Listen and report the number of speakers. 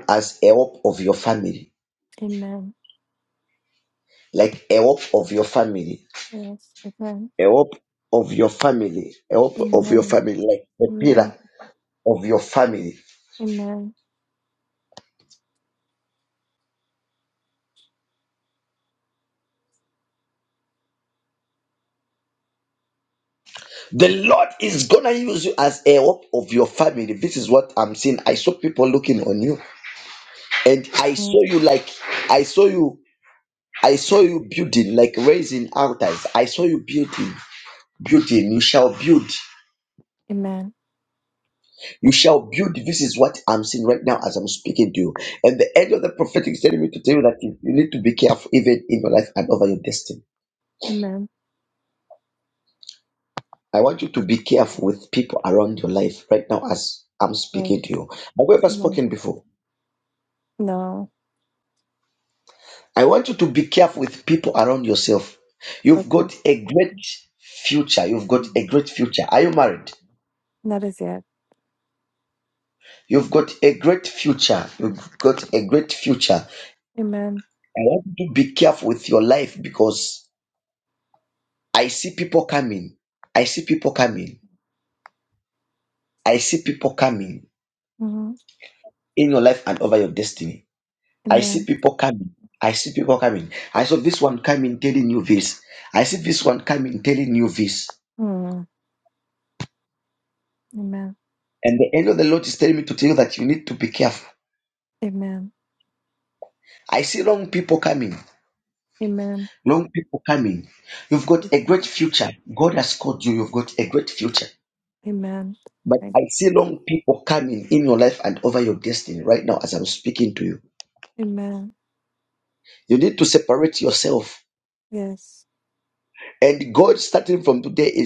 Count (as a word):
two